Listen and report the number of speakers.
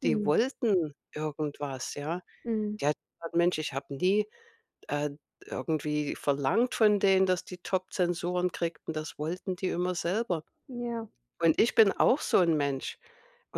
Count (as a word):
two